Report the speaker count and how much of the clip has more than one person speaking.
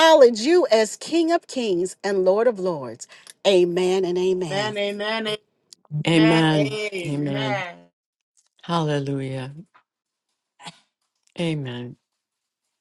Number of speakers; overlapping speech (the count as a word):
three, about 12%